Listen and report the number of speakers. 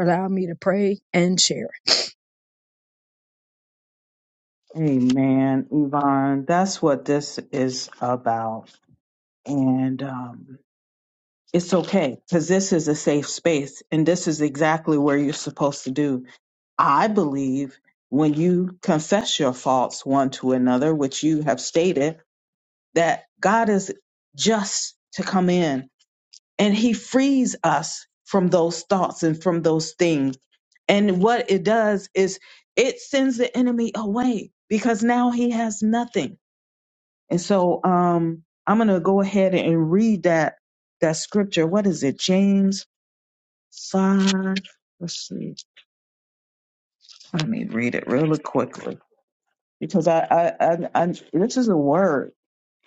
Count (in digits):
2